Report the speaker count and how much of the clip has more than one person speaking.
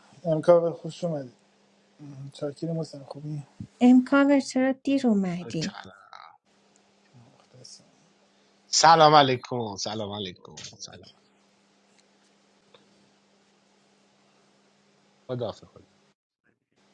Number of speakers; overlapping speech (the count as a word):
three, under 1%